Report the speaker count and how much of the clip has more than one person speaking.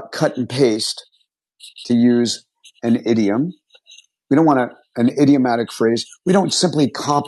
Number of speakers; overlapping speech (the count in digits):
1, no overlap